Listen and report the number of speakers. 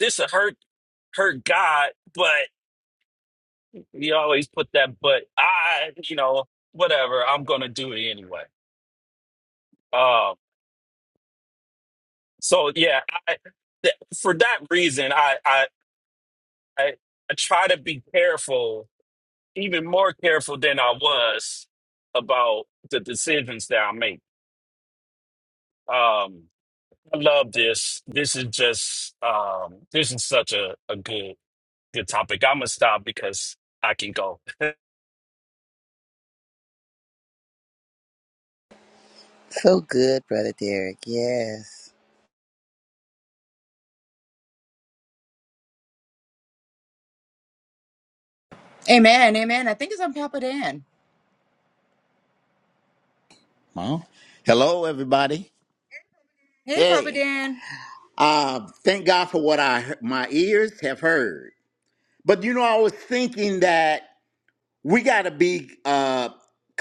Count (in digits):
4